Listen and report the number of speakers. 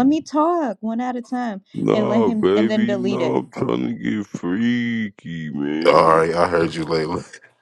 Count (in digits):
3